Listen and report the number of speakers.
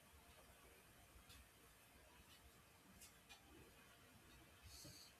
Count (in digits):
0